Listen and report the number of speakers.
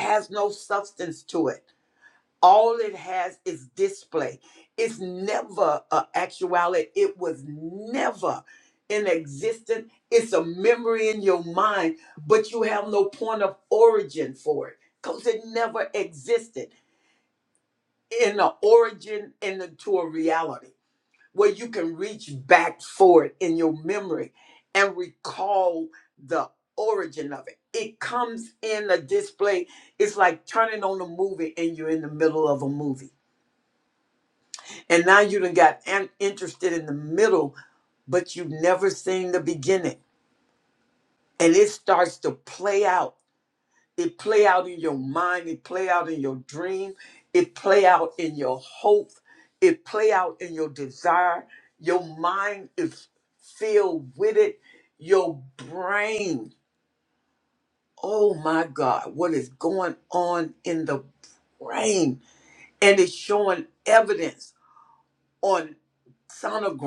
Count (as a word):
one